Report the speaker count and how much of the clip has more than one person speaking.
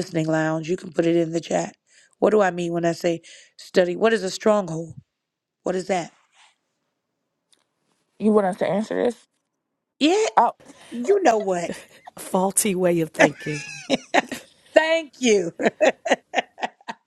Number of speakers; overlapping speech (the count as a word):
three, no overlap